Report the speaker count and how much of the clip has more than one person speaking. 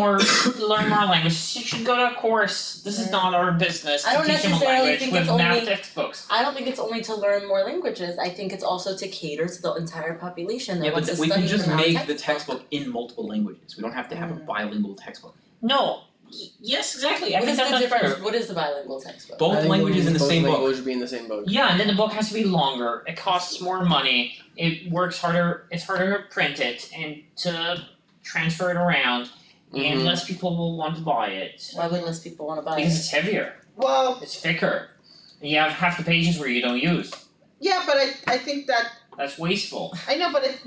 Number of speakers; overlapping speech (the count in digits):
5, about 22%